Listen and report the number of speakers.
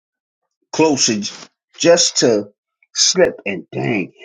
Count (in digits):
1